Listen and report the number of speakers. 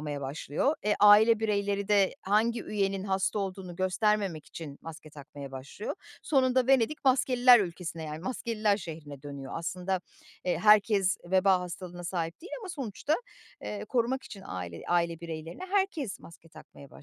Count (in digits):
1